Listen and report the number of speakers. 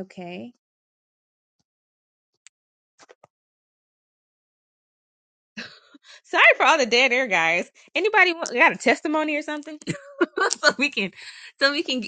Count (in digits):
1